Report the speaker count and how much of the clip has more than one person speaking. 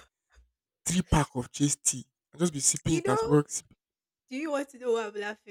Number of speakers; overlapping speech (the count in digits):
2, about 9%